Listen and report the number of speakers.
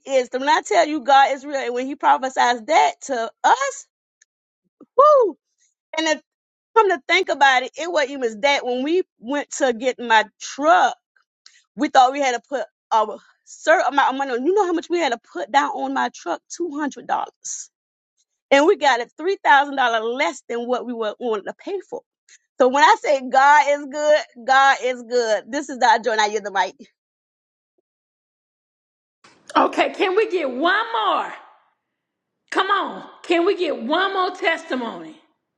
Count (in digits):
2